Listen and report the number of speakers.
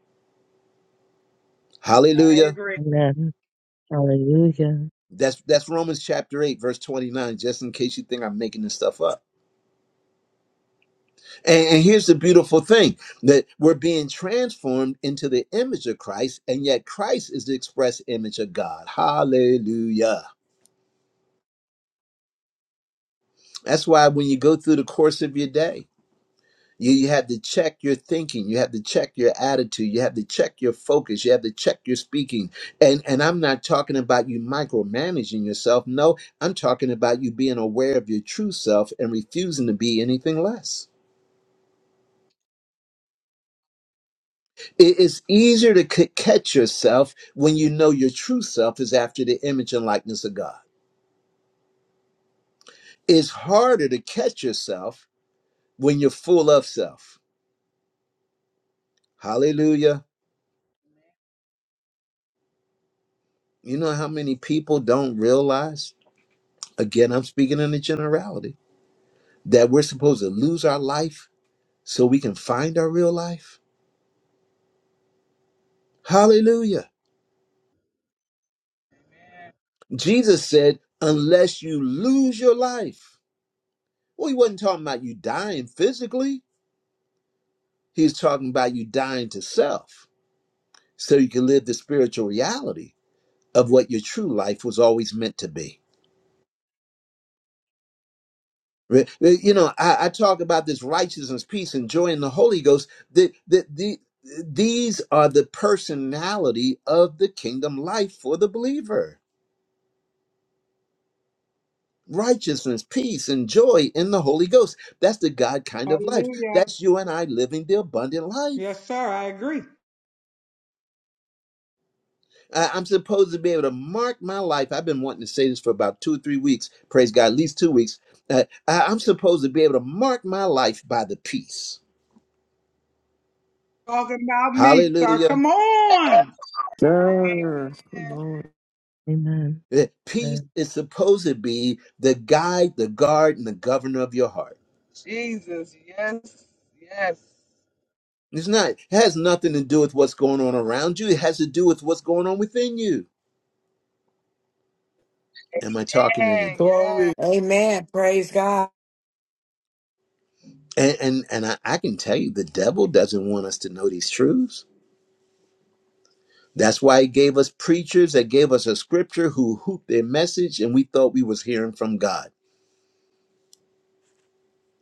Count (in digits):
6